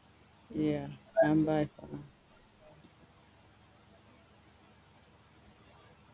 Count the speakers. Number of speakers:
1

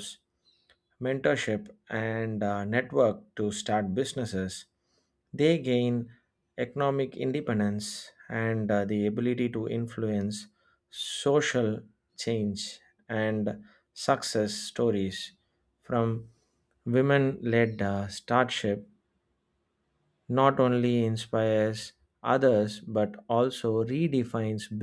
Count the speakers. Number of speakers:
1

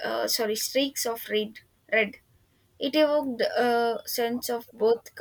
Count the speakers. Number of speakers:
1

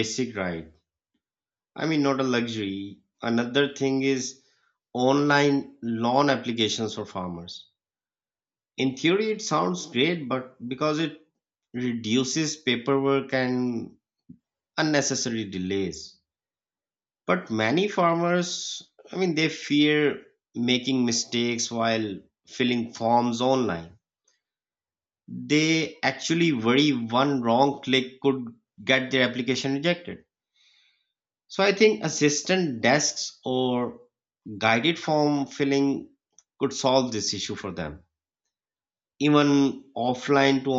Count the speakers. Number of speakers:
1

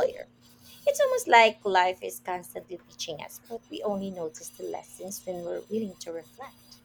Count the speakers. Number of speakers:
1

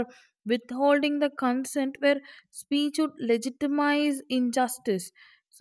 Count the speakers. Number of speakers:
1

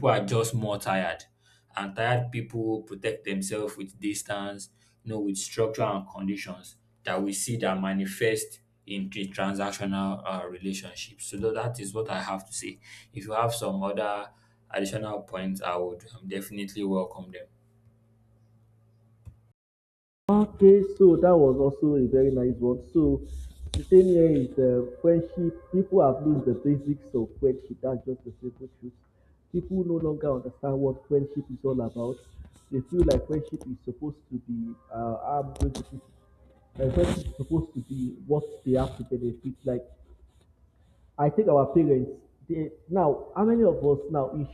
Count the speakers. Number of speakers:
2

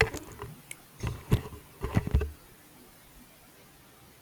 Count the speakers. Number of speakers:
0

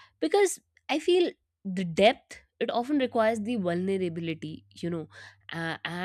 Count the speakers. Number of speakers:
1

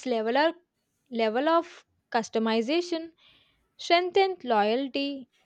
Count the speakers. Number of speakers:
1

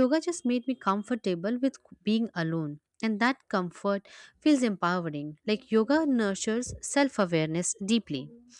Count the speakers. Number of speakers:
1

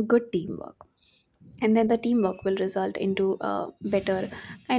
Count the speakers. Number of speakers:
1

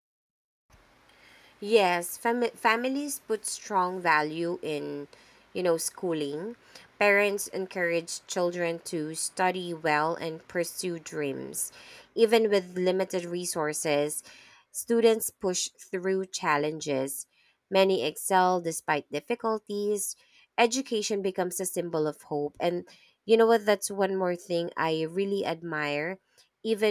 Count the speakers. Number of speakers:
1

